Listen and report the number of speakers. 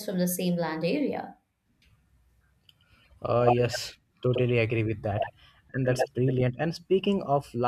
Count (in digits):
2